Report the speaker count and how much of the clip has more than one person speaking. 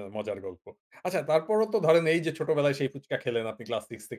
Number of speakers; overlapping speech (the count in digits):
1, no overlap